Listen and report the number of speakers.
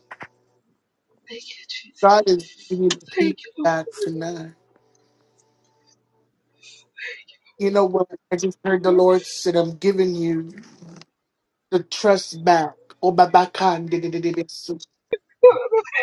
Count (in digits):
2